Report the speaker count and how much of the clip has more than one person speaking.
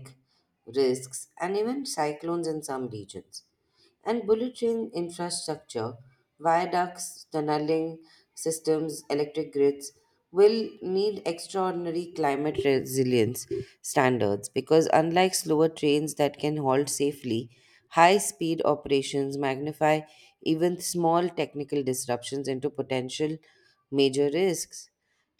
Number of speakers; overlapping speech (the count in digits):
1, no overlap